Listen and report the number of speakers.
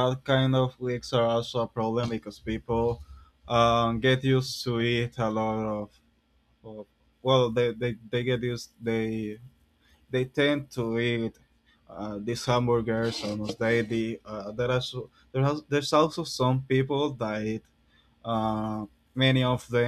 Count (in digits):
1